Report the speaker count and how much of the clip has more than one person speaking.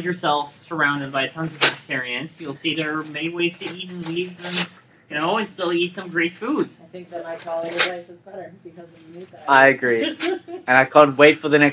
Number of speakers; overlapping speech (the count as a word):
three, about 2%